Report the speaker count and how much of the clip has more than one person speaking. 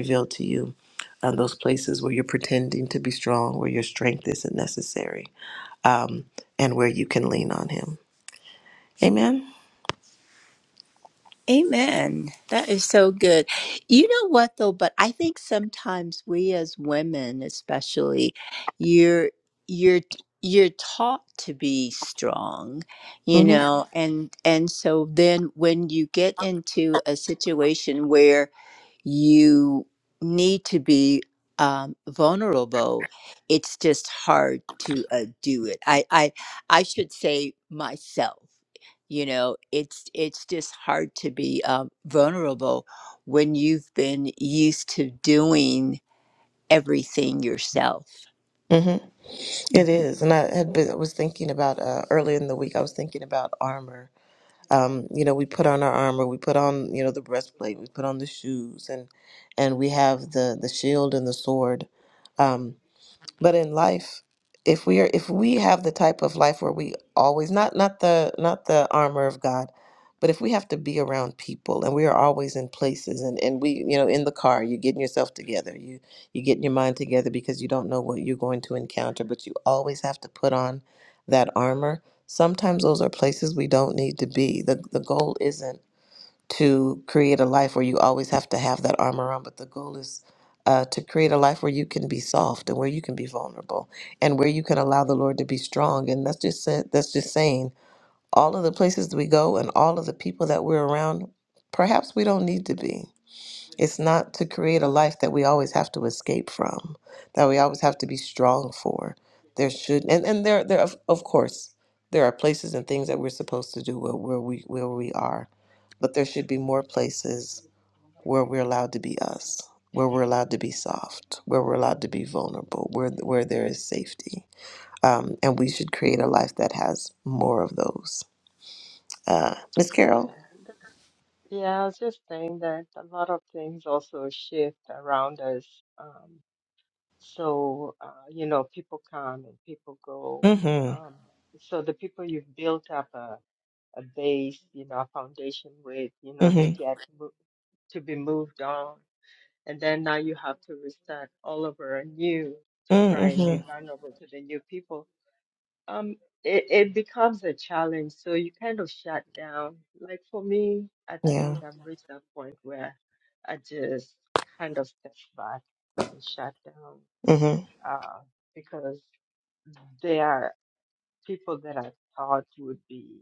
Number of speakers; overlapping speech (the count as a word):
three, about 1%